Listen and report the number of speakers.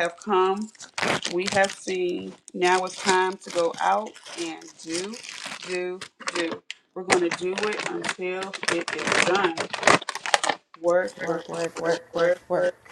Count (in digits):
2